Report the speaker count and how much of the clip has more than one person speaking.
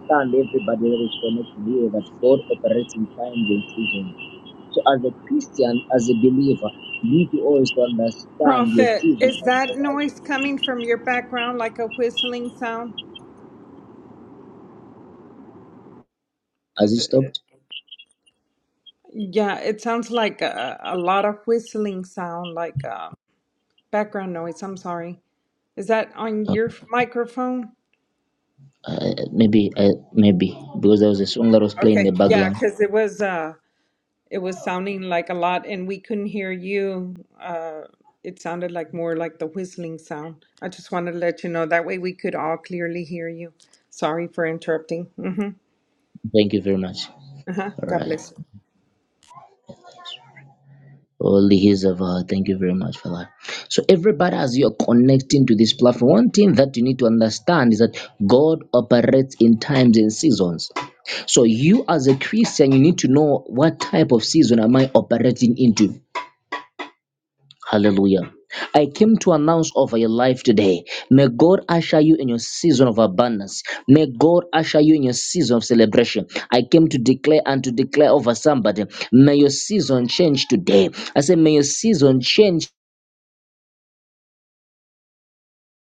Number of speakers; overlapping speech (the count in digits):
2, about 4%